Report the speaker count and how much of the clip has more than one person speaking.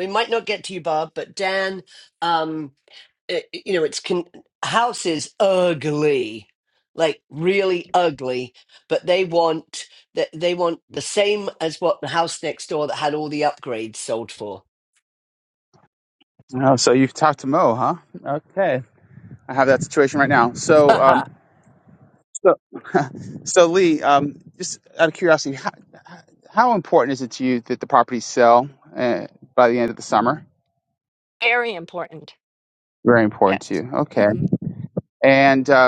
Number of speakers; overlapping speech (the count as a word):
three, about 2%